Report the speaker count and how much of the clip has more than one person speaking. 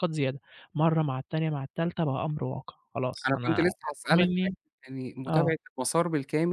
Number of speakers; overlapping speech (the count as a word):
two, about 20%